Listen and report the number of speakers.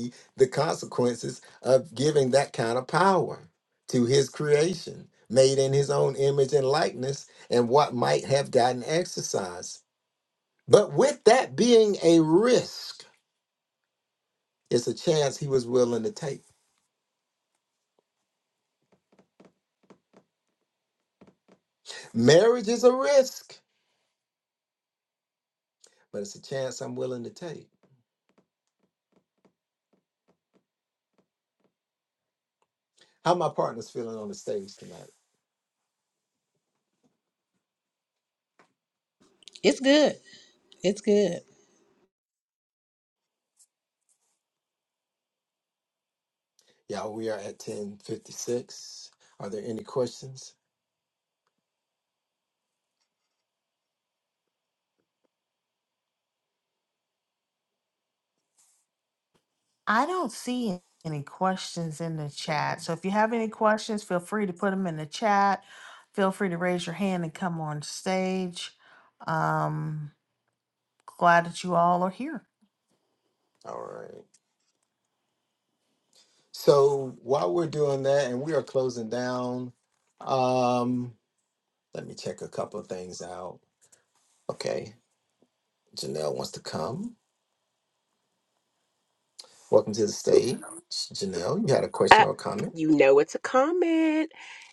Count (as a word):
four